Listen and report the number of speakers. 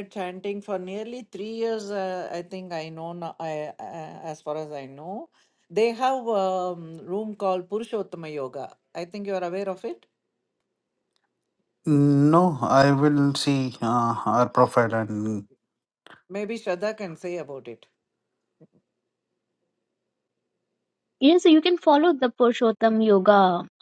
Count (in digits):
3